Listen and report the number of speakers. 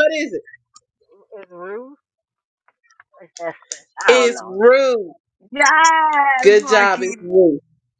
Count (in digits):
3